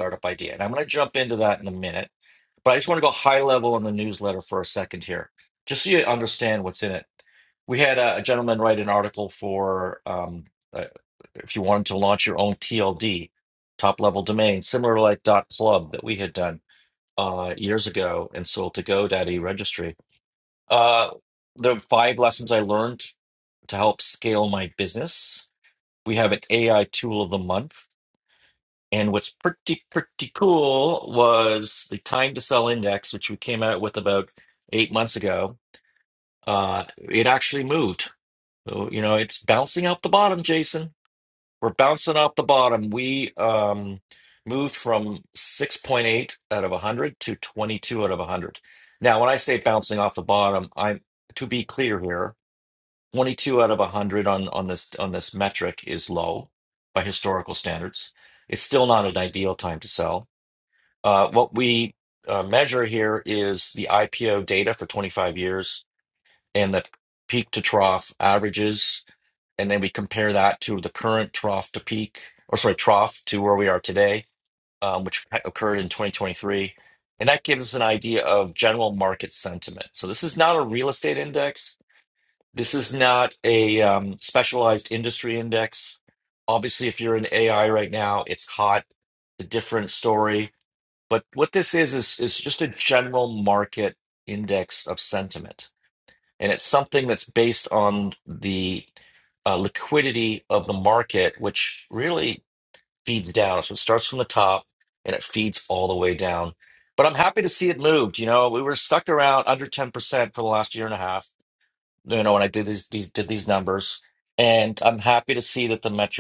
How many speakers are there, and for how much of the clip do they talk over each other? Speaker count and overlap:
one, no overlap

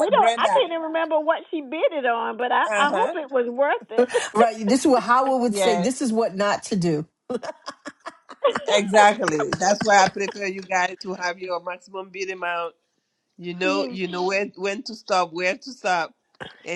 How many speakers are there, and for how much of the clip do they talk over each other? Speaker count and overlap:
three, about 12%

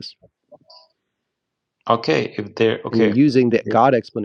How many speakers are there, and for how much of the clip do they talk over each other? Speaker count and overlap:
two, about 9%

